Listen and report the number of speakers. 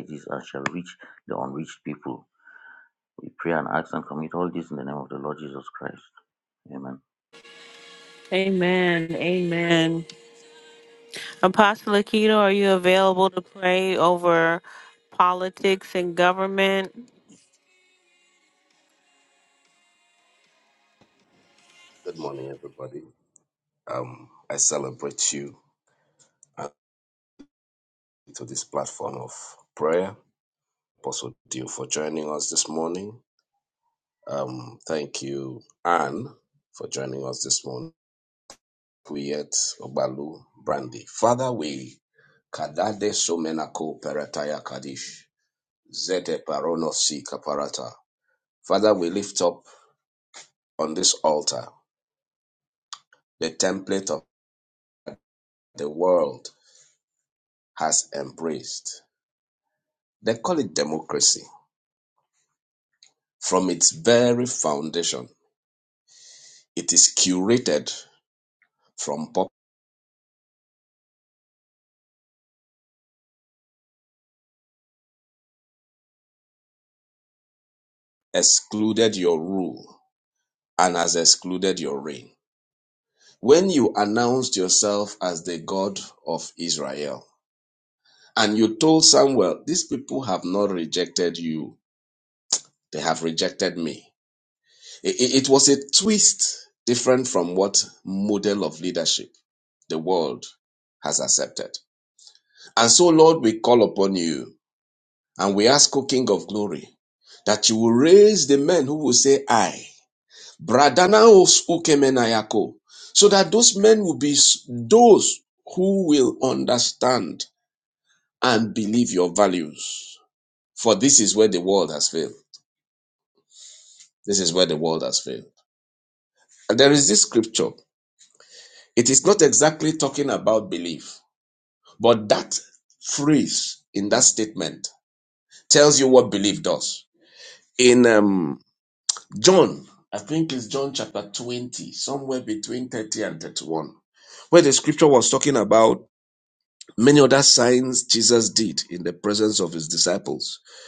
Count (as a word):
three